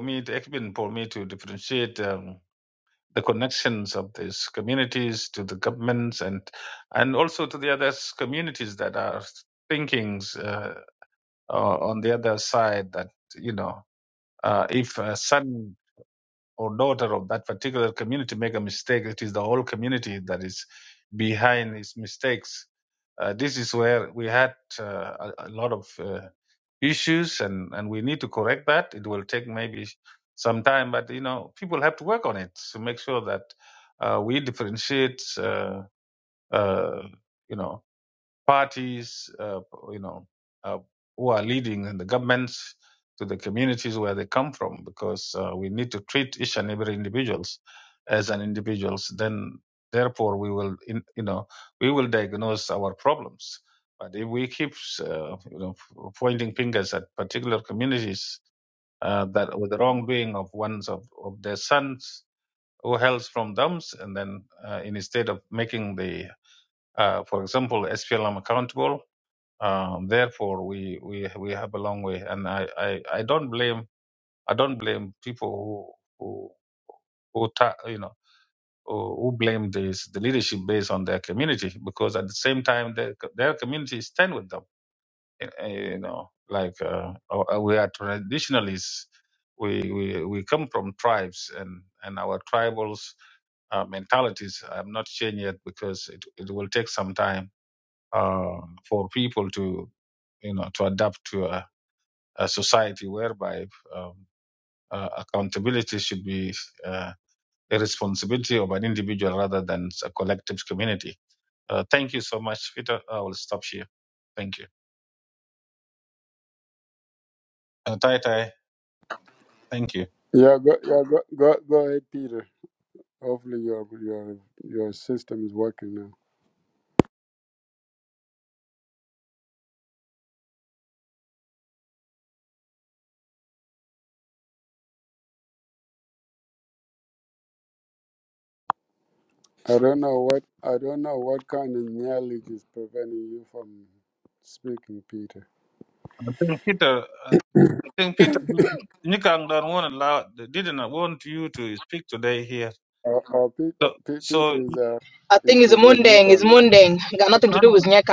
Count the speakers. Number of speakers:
three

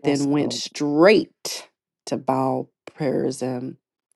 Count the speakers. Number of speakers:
one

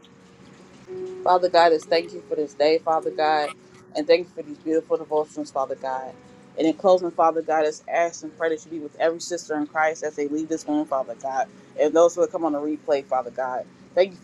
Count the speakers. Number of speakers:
one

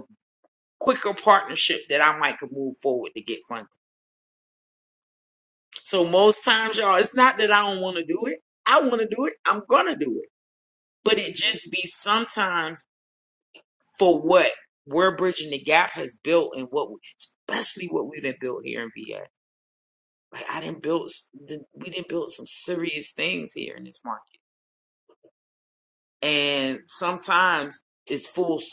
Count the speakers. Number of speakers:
one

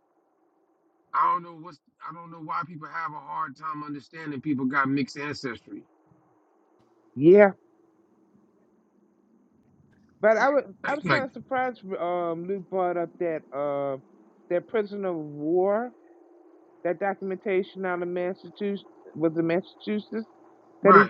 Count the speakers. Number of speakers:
two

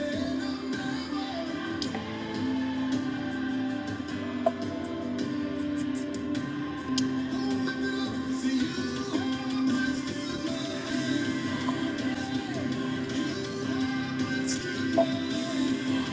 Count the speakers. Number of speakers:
zero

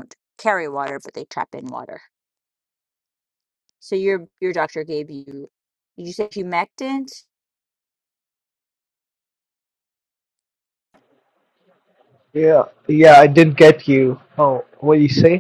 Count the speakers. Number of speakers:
two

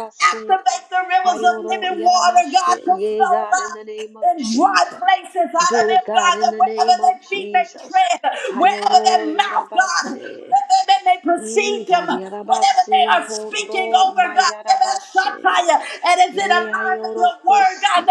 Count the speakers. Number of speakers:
two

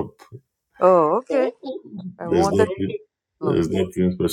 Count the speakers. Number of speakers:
two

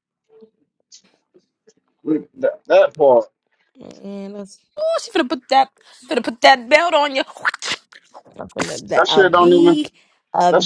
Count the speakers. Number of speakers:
three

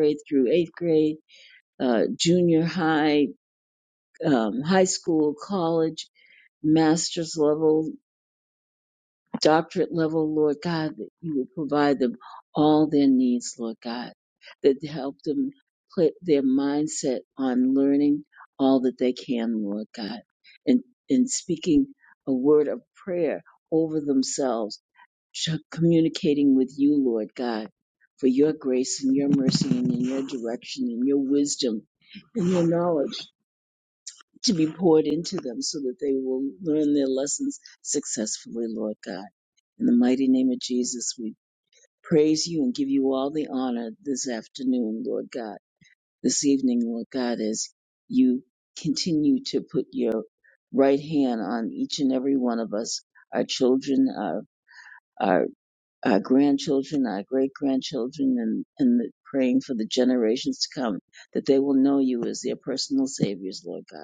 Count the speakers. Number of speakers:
one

